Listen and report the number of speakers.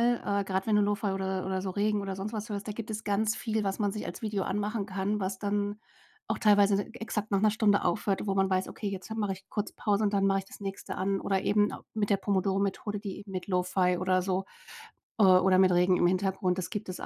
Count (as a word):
one